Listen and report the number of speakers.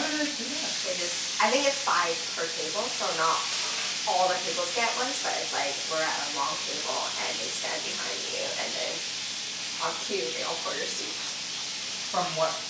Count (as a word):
two